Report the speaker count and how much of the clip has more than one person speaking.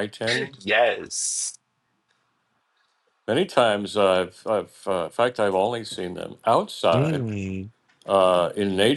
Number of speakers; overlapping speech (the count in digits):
2, about 4%